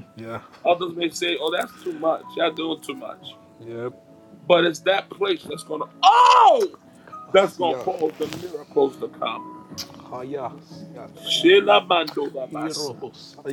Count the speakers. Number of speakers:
2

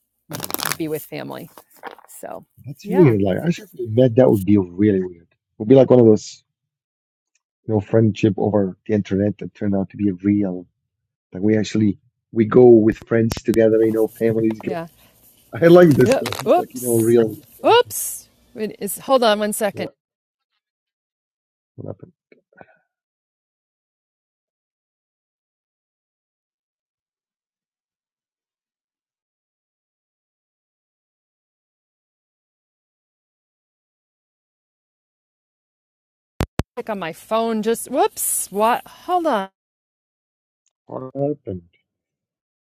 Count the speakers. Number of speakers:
2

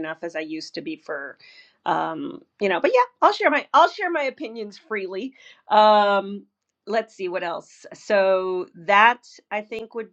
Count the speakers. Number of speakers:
1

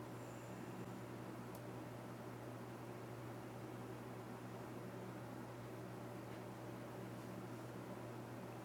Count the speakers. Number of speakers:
0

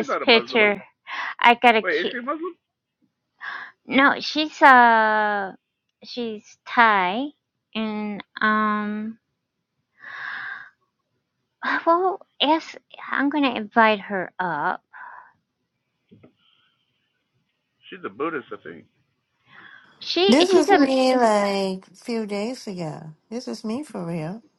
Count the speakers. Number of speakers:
3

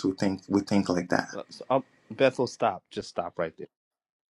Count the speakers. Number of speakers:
2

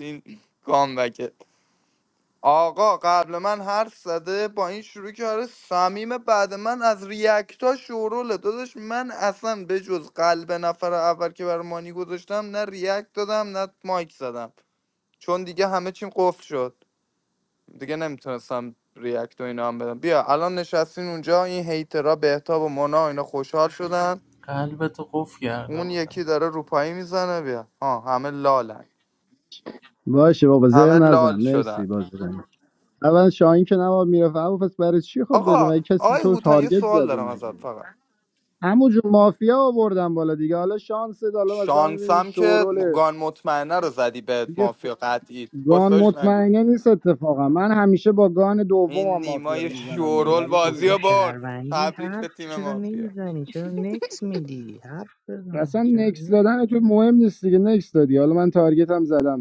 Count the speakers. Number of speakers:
4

